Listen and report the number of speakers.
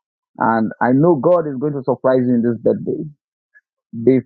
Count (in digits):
1